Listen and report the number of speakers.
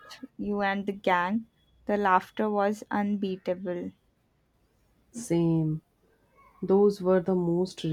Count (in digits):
2